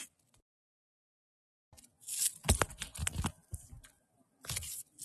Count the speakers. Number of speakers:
zero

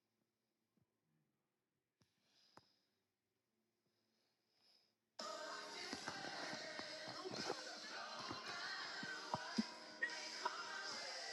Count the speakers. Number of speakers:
zero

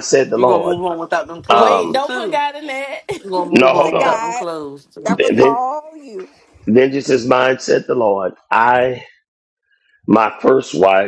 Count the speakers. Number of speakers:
four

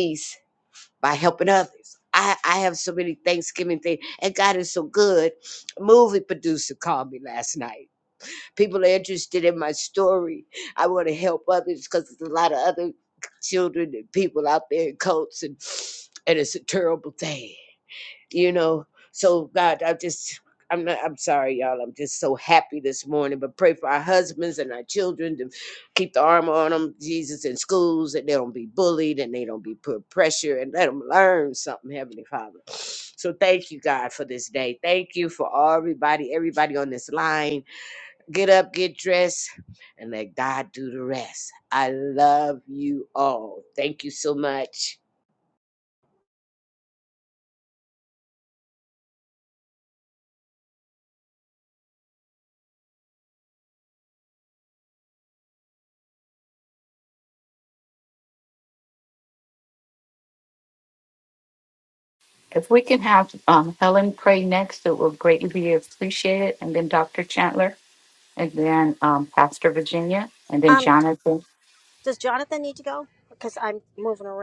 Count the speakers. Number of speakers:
three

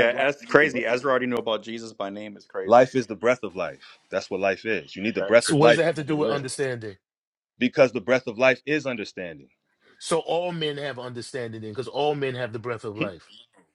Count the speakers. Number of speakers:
three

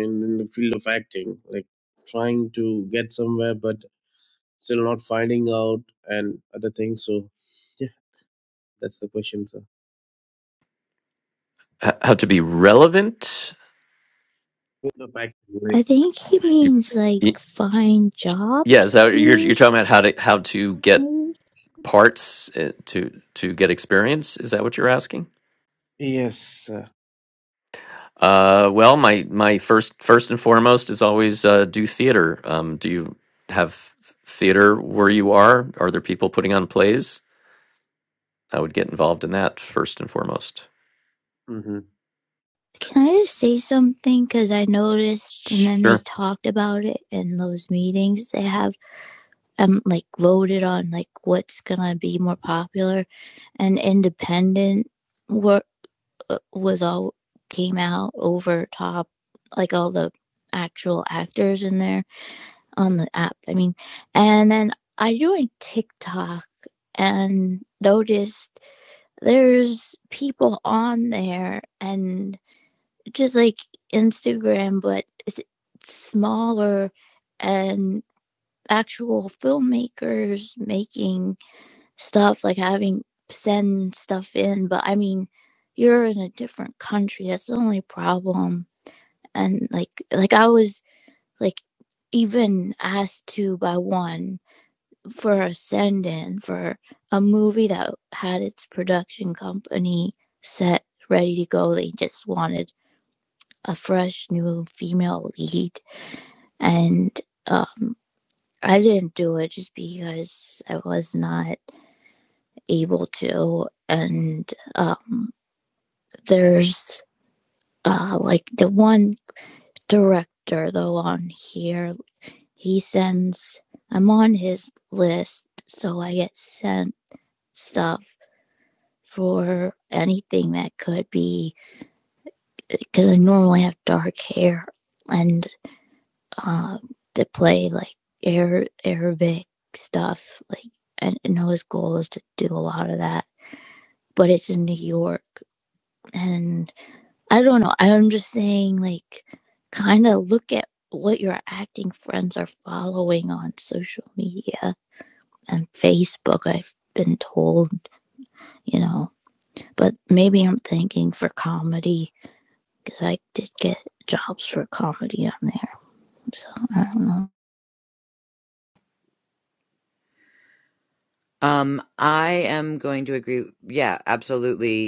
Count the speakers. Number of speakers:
four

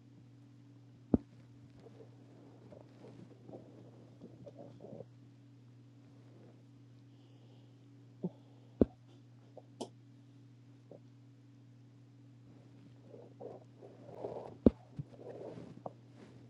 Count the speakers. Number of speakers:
zero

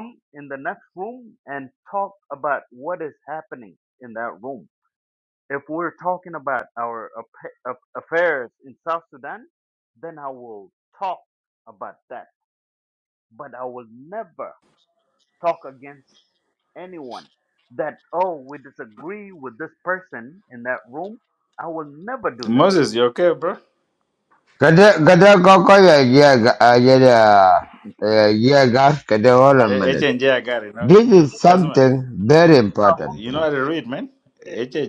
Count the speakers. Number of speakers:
three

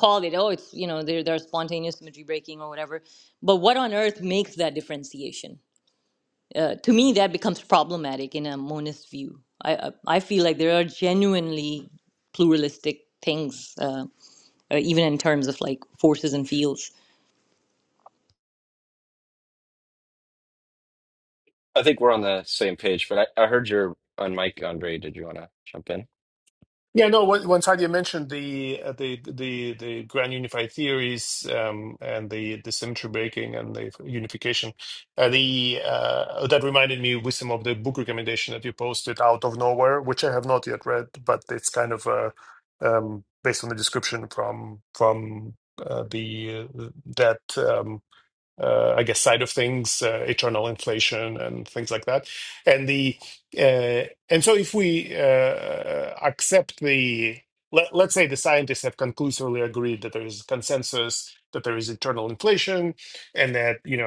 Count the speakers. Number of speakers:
three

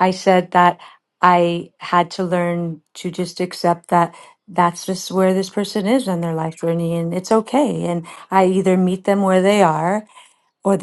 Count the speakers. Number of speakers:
one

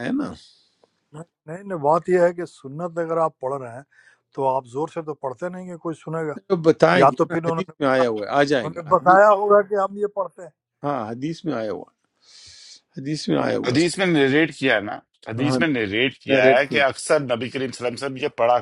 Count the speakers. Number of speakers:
three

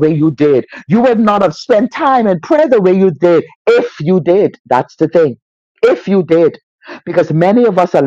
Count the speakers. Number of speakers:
one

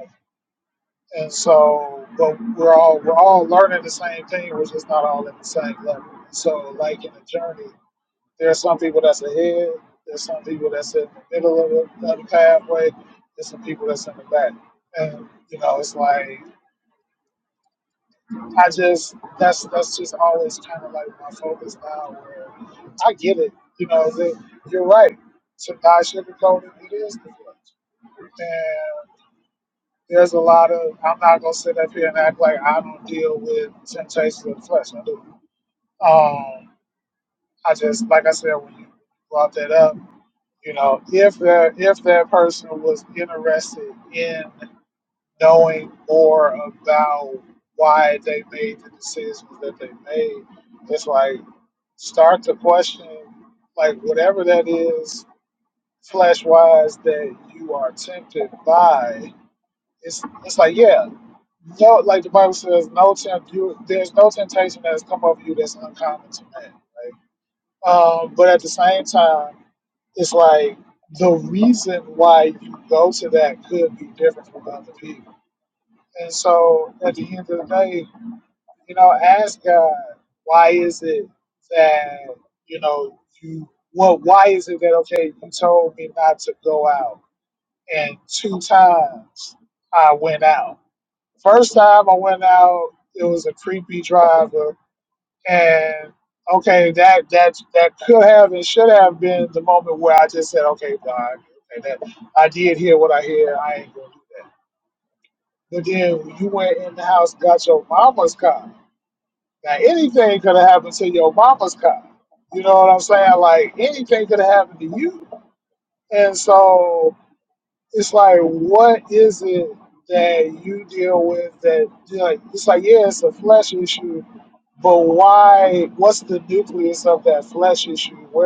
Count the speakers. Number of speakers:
one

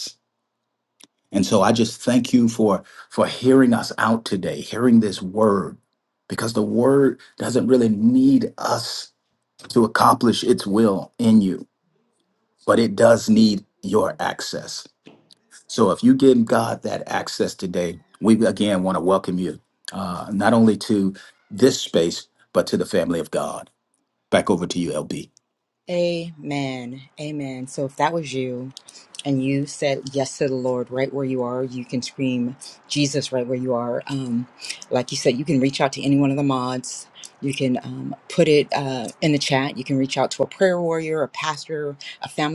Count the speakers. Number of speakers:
two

